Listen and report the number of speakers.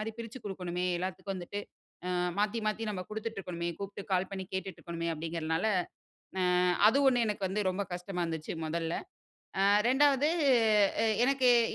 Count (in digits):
1